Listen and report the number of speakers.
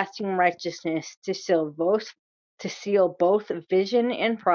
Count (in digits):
1